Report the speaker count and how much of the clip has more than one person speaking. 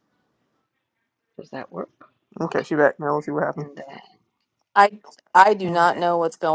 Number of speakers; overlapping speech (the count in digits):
3, about 10%